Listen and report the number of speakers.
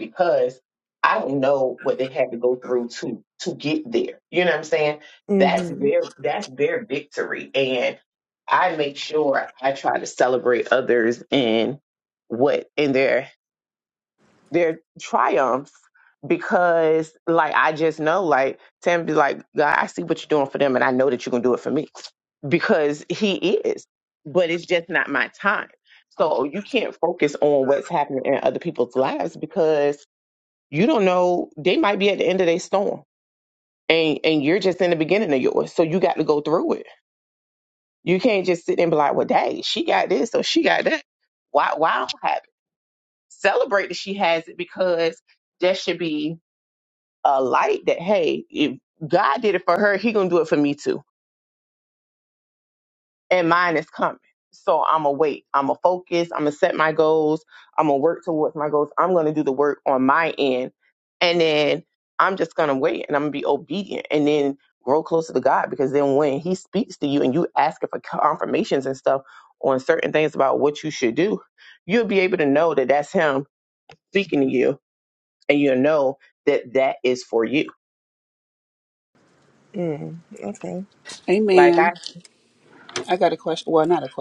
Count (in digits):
3